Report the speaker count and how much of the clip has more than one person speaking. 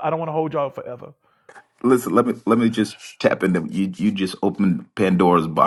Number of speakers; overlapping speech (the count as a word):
two, no overlap